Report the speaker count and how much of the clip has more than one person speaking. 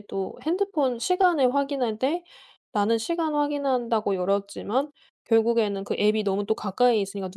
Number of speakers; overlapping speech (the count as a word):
one, no overlap